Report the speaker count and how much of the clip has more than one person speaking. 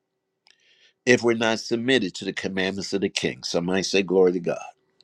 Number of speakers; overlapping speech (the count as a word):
one, no overlap